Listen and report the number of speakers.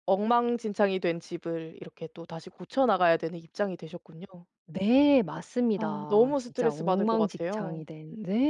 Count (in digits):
2